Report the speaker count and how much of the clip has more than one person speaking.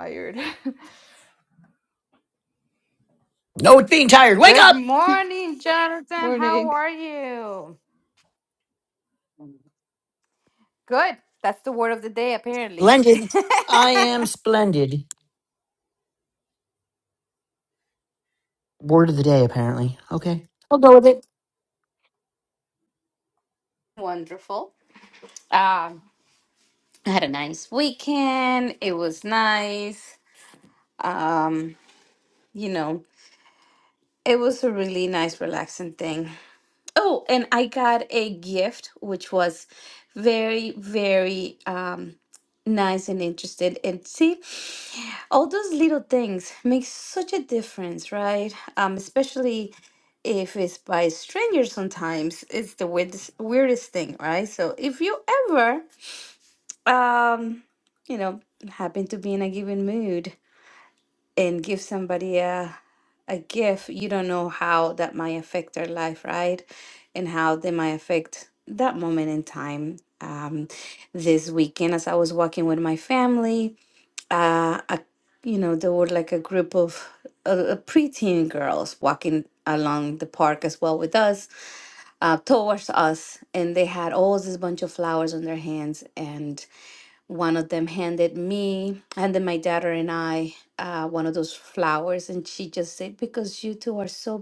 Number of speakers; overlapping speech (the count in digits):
3, about 1%